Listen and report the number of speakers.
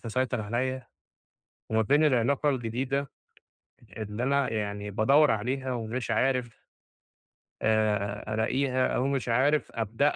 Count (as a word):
one